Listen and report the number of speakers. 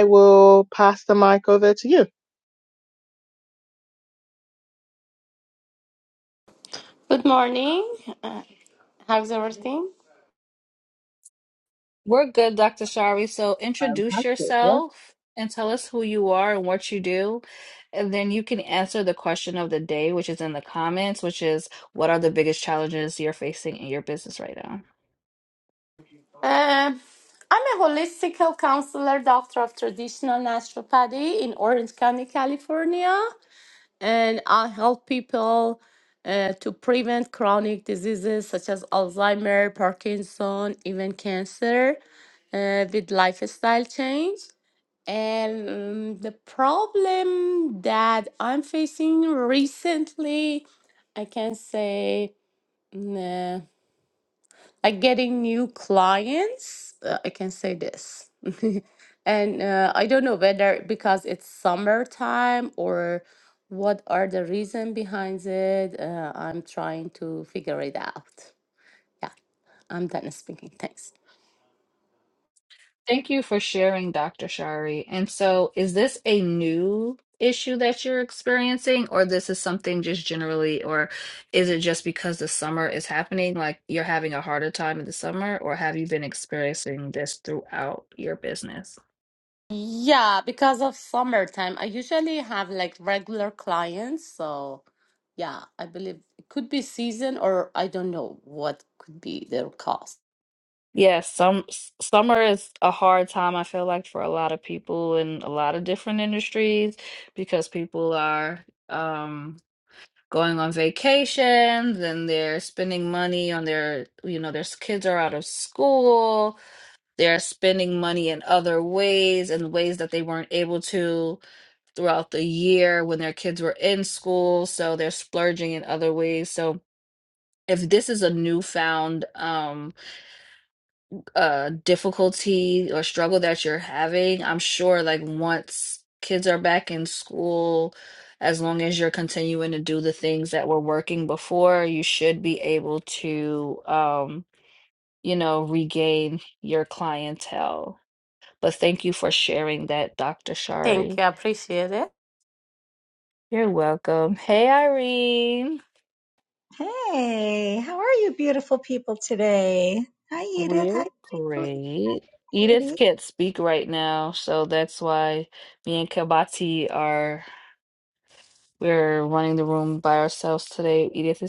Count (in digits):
4